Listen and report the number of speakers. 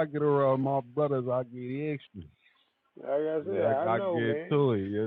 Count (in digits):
2